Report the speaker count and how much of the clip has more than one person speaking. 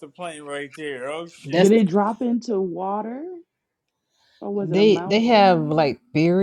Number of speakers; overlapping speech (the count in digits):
3, about 21%